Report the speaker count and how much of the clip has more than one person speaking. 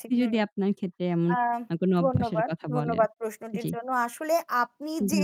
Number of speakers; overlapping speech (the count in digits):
2, about 36%